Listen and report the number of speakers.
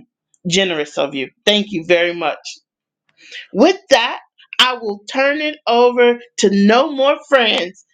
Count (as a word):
one